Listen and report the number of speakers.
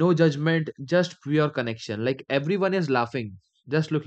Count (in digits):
1